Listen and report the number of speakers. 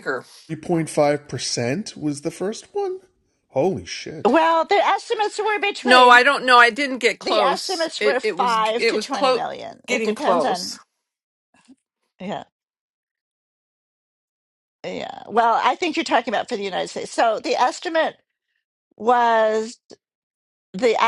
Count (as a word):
three